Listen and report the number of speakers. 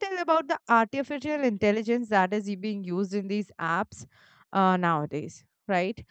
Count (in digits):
1